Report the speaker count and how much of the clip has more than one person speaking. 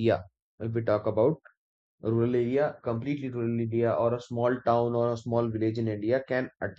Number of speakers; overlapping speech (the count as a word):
one, no overlap